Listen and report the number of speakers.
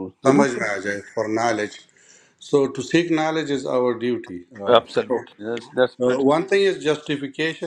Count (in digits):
2